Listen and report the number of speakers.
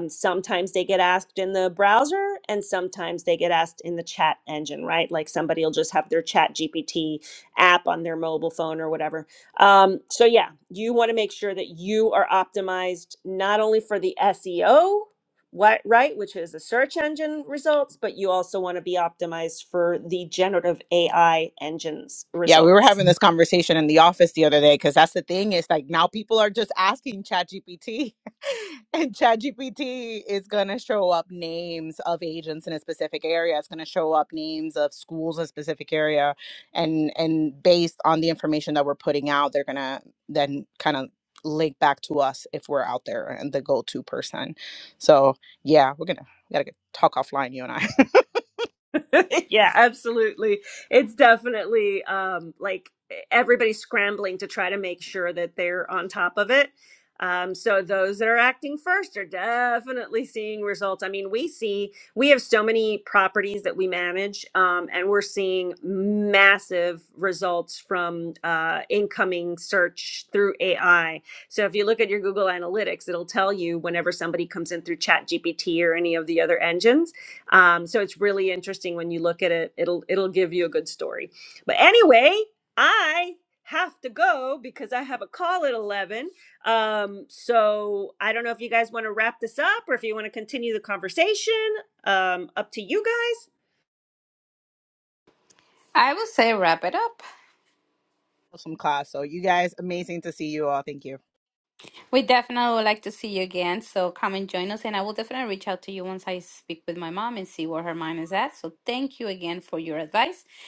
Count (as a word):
three